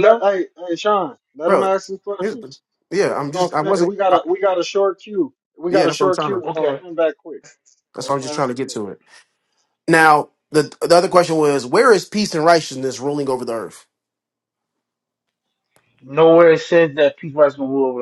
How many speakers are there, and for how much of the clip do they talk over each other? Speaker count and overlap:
3, about 19%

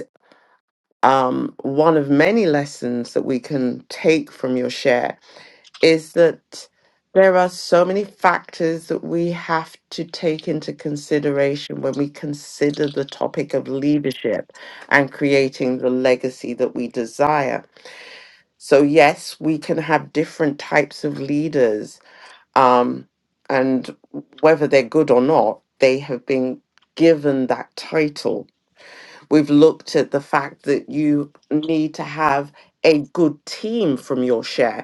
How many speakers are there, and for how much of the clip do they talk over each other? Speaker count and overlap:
1, no overlap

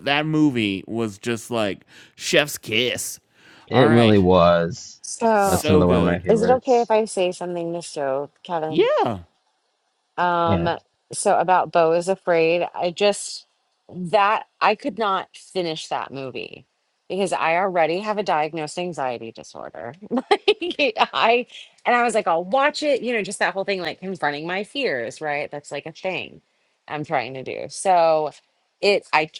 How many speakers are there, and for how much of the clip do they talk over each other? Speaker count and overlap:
3, about 6%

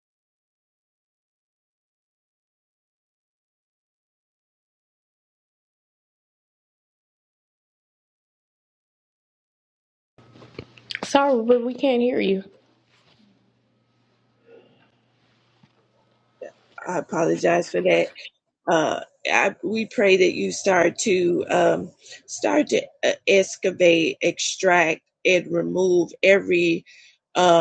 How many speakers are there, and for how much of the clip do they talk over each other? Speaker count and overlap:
2, no overlap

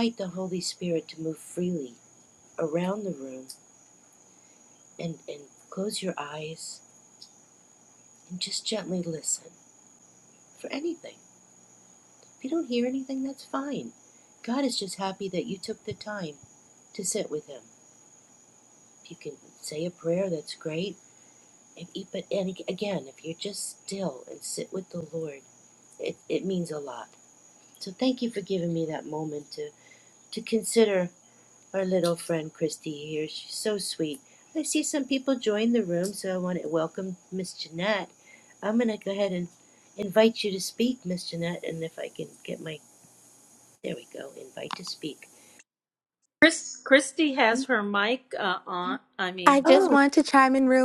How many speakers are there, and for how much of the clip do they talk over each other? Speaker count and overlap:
3, about 1%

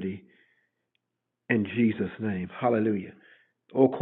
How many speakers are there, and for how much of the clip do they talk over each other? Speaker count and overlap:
1, no overlap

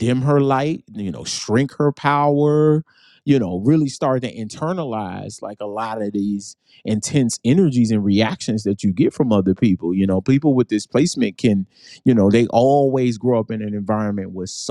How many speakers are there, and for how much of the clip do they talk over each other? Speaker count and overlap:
1, no overlap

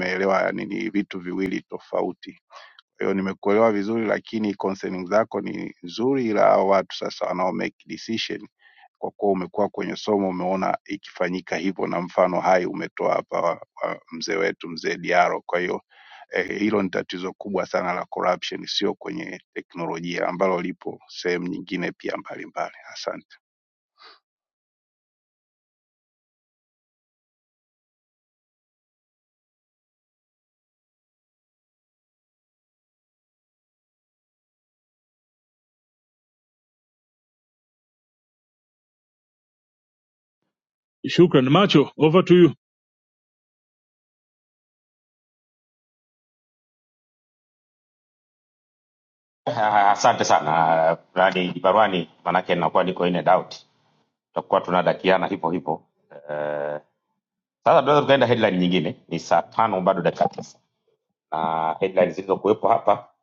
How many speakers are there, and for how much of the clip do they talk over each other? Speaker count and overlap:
3, no overlap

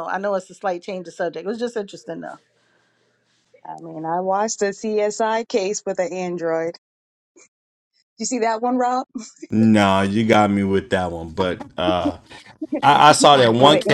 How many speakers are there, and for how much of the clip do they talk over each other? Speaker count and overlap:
3, about 3%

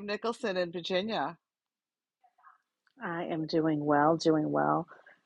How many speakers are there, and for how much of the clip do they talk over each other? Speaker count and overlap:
2, no overlap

